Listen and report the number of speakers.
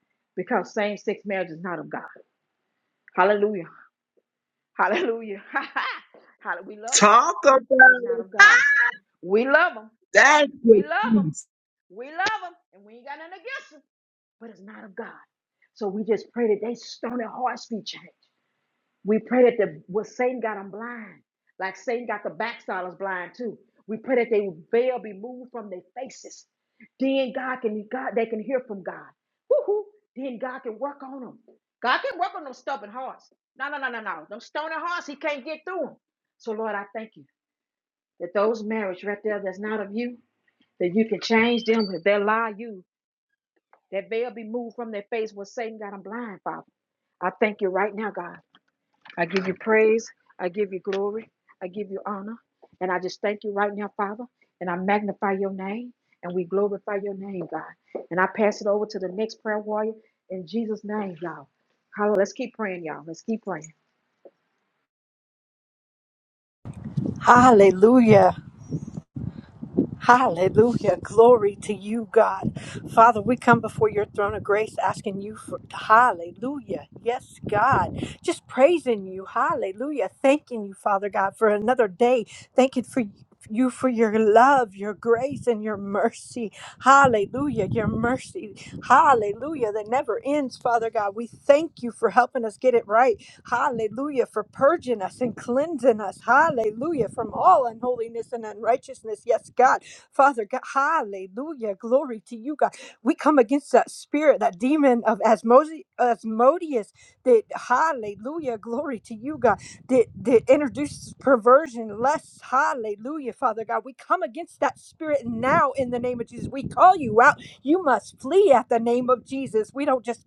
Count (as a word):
three